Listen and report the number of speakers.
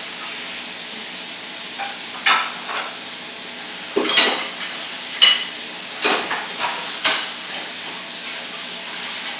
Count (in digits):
0